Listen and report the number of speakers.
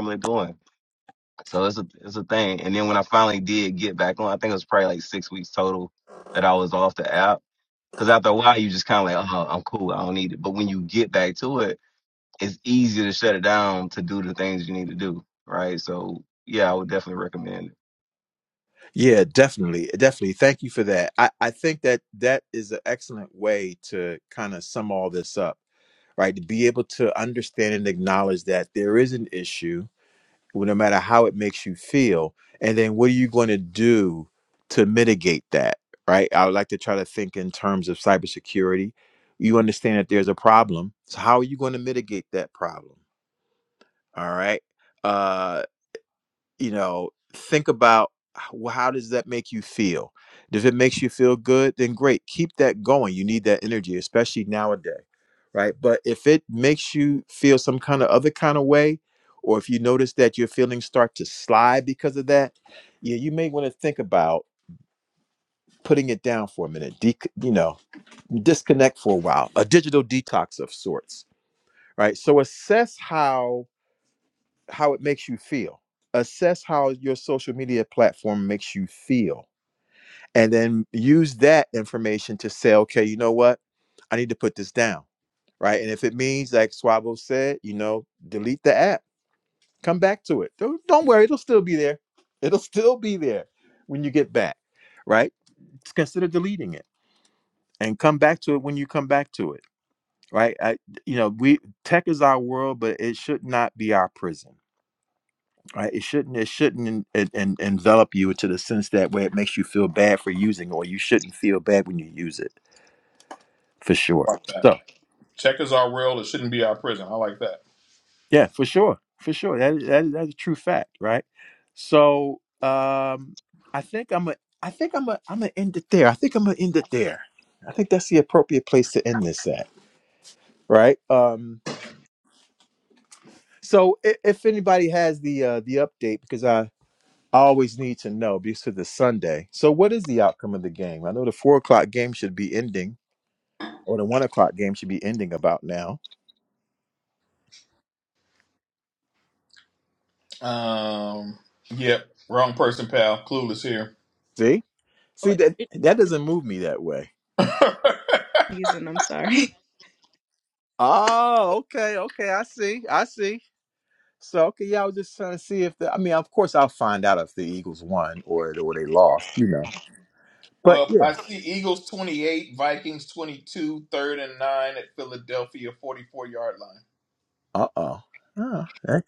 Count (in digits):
4